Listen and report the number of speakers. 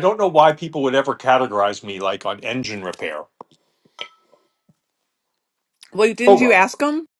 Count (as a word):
two